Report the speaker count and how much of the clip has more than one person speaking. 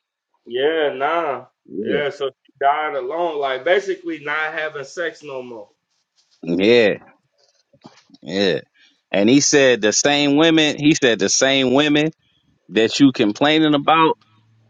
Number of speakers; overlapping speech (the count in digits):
2, about 2%